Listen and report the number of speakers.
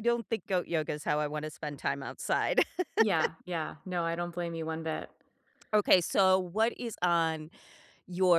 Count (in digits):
2